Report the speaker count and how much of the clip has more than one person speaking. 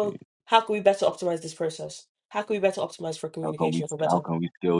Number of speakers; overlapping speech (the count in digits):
2, about 17%